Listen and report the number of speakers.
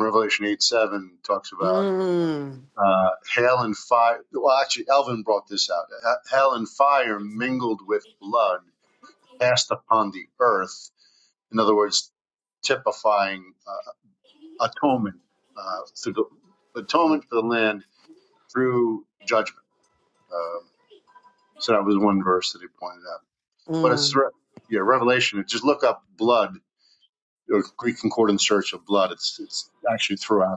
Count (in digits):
2